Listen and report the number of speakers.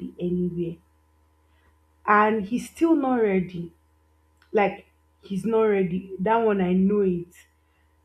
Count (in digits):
1